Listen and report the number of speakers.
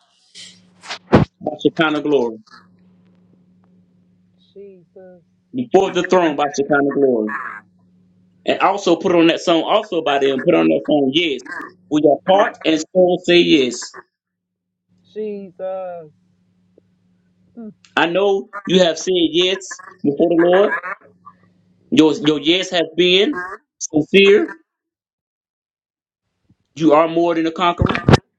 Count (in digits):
2